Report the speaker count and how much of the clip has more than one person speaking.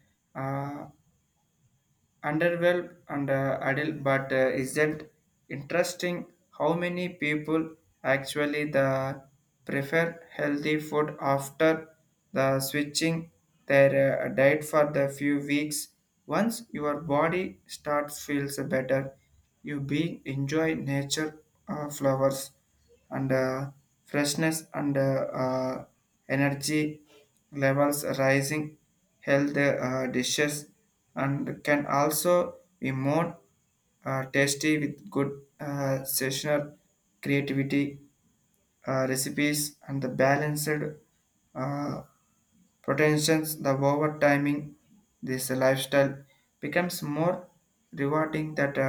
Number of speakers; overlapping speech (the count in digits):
1, no overlap